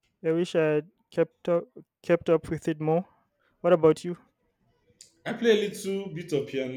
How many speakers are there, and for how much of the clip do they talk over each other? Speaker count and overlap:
2, no overlap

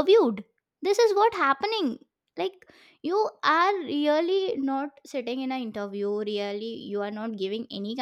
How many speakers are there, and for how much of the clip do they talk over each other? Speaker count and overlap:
1, no overlap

